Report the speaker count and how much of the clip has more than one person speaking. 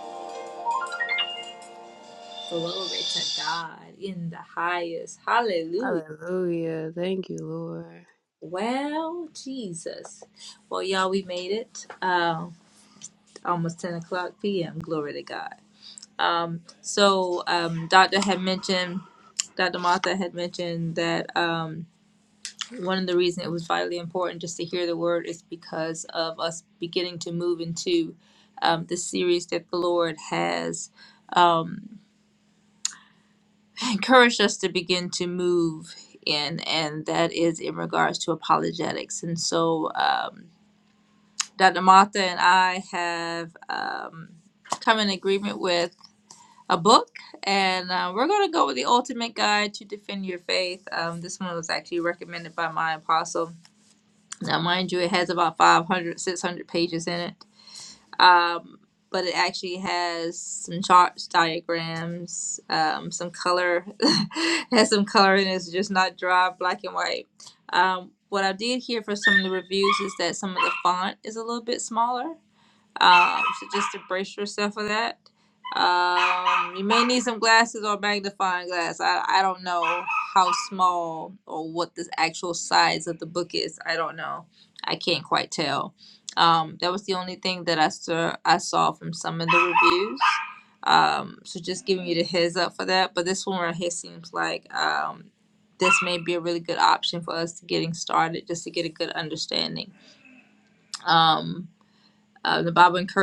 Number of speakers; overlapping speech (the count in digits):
2, under 1%